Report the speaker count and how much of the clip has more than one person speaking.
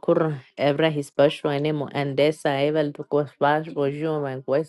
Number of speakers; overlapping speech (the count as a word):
one, no overlap